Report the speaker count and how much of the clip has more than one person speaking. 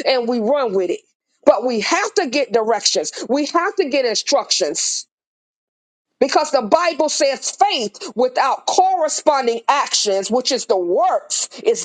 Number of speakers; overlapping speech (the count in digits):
1, no overlap